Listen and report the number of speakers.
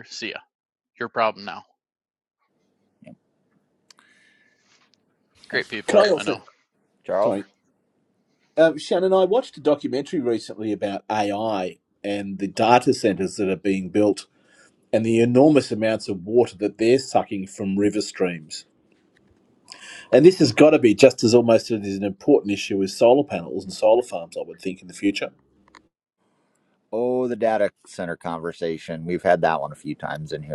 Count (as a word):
three